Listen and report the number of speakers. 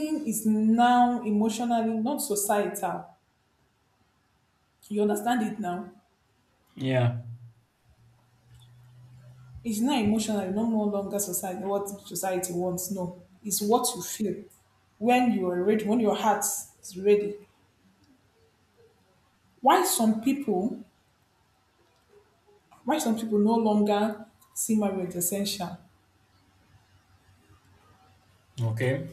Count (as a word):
two